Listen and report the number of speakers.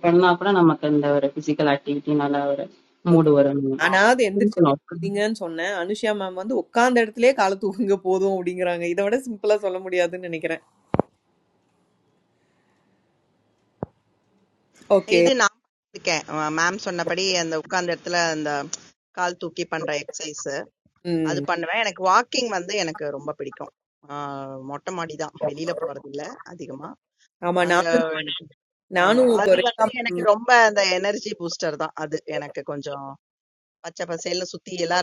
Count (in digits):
3